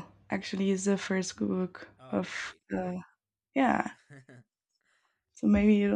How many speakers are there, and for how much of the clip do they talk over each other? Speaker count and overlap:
2, about 17%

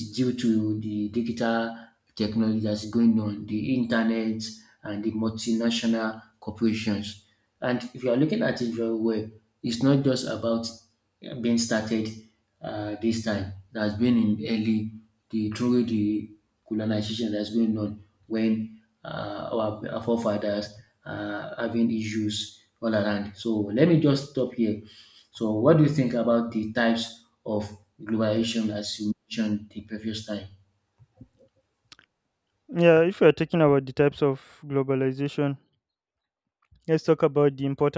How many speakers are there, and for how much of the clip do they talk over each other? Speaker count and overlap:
2, no overlap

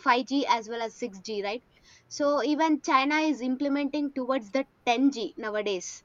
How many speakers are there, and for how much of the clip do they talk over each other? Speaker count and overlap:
1, no overlap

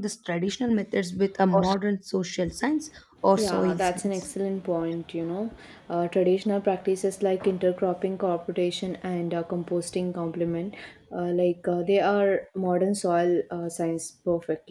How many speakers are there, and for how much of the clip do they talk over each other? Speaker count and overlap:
2, about 5%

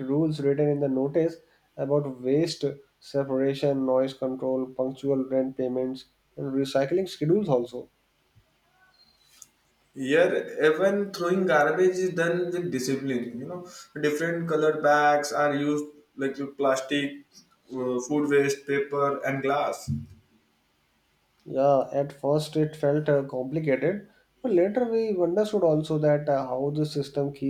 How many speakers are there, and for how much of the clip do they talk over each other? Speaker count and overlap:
2, no overlap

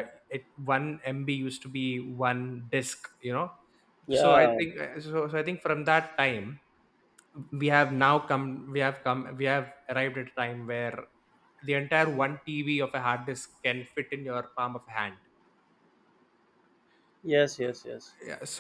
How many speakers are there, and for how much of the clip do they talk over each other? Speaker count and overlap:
2, about 3%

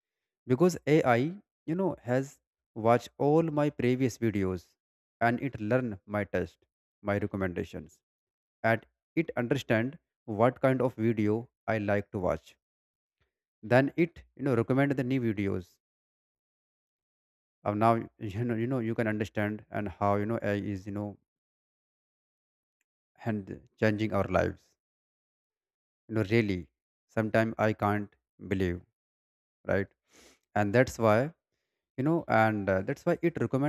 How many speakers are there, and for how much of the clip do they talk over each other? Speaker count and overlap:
1, no overlap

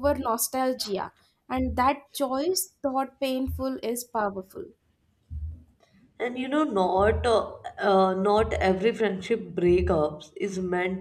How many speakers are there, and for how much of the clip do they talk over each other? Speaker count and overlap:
2, no overlap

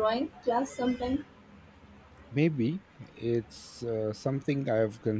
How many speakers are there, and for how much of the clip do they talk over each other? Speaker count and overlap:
2, no overlap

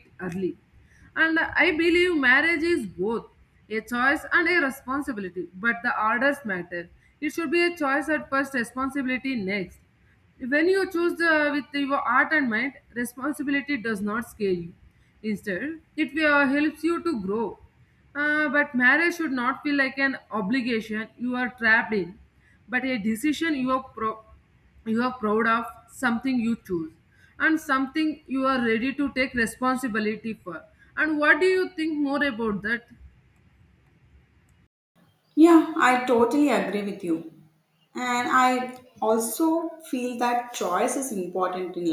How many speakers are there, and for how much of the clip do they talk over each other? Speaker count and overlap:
2, no overlap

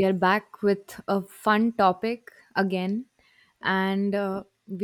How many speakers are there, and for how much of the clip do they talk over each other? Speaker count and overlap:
1, no overlap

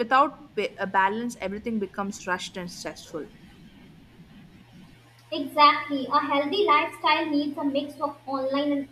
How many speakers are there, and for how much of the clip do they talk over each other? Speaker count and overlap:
2, no overlap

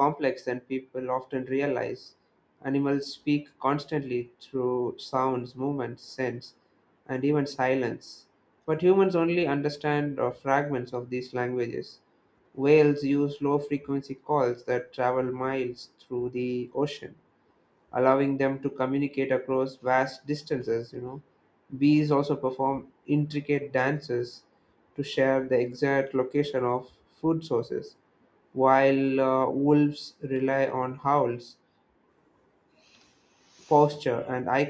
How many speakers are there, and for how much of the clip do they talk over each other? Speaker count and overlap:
1, no overlap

